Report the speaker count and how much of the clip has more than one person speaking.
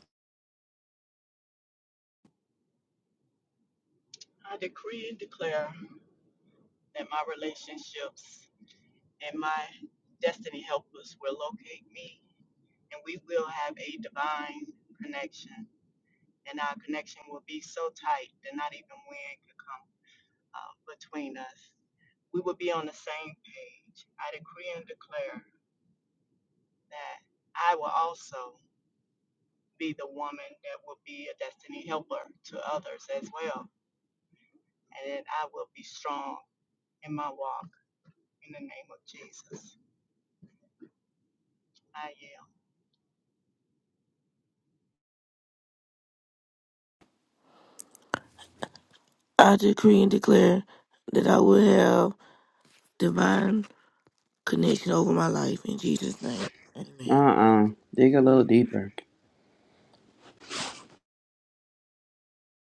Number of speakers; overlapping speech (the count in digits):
3, under 1%